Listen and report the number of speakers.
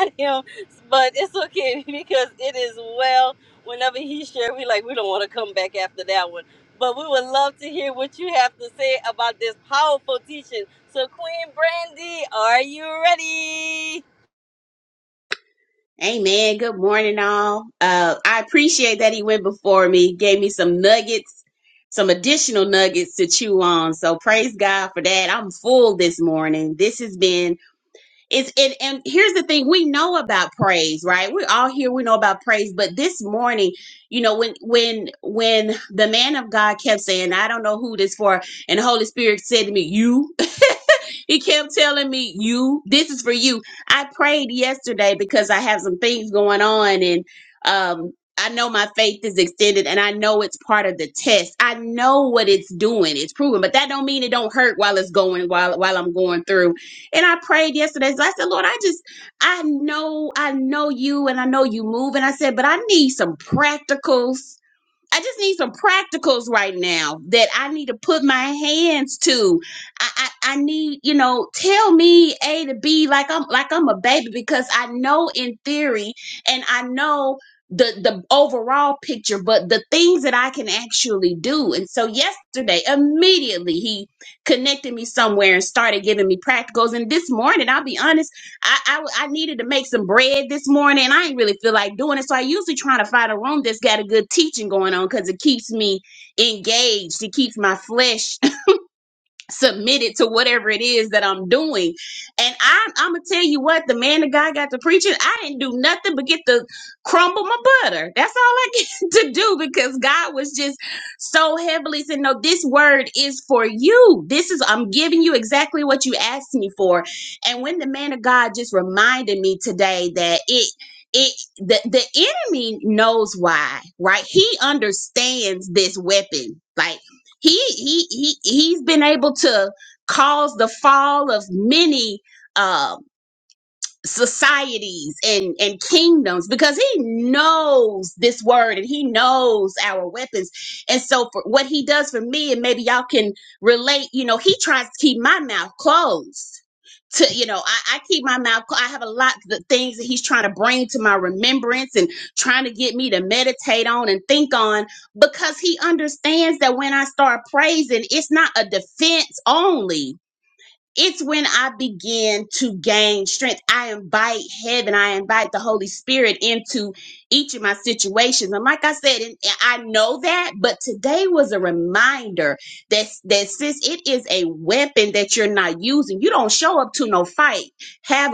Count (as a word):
two